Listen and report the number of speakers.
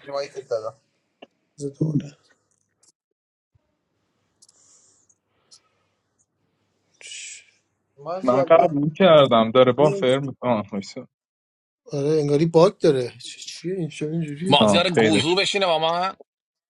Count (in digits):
4